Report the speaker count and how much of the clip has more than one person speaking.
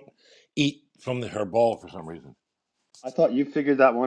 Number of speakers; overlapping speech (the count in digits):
2, no overlap